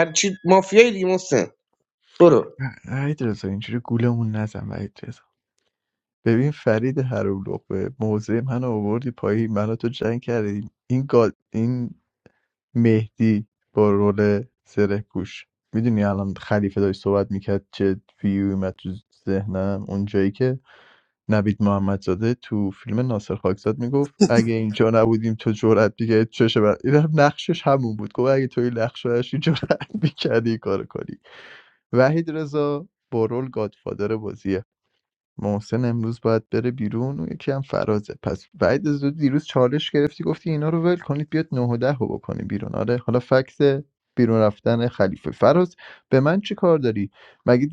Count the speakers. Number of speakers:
two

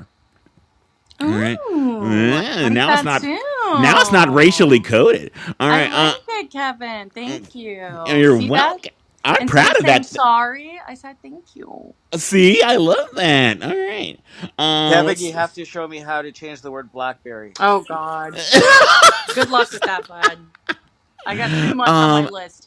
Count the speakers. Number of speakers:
three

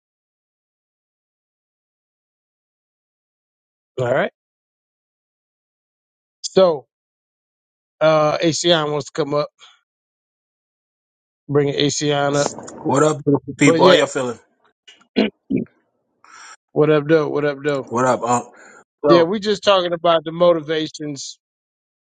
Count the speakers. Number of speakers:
two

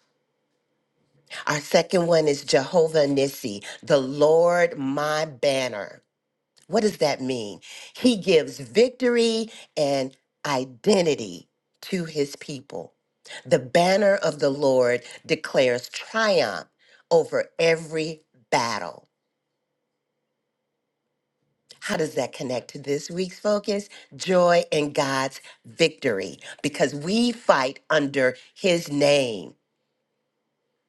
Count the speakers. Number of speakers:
one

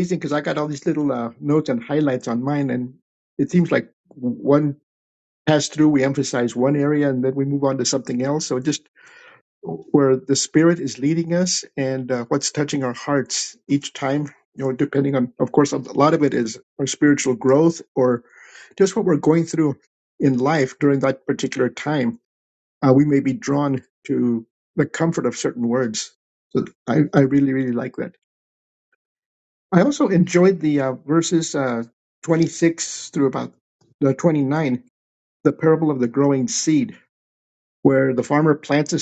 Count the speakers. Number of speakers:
one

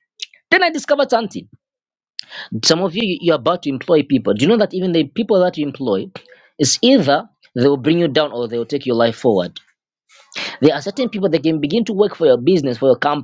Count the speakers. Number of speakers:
one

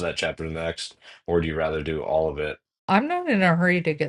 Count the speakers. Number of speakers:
two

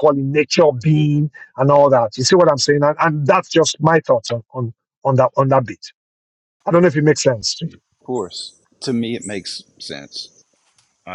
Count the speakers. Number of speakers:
two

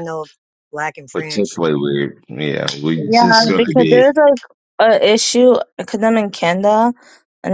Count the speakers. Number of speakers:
three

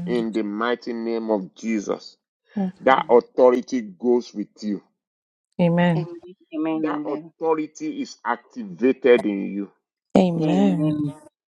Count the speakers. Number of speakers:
three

